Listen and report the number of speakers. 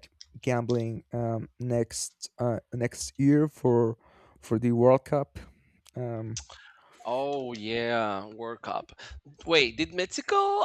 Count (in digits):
2